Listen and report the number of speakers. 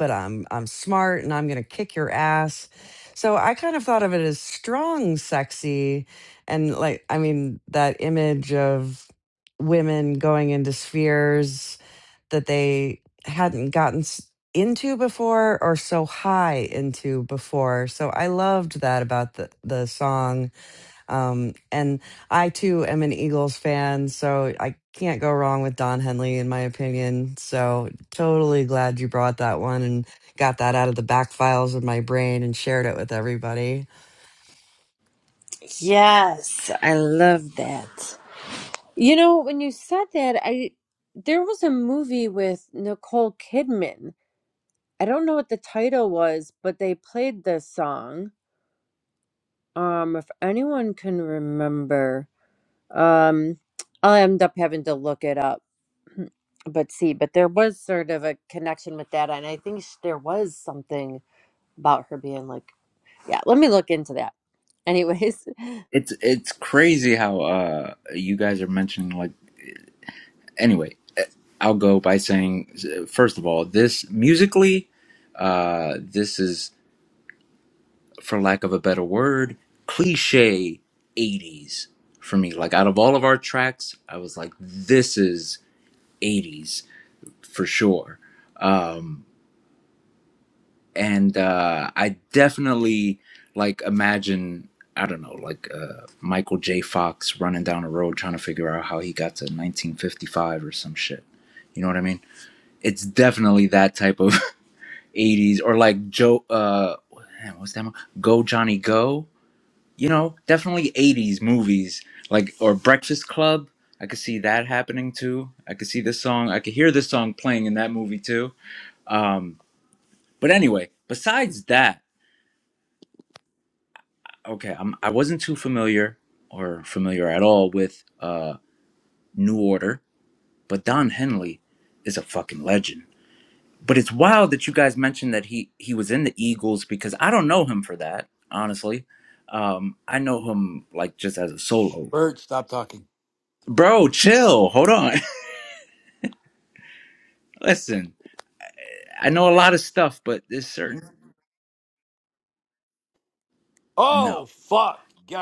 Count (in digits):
4